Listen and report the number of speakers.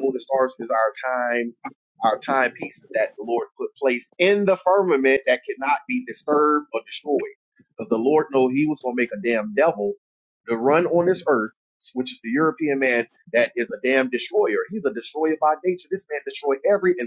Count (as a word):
one